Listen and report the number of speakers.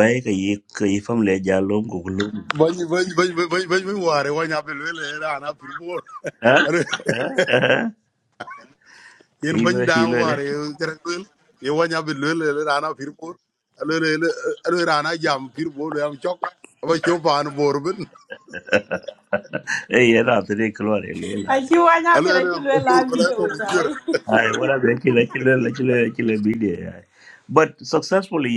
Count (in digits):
3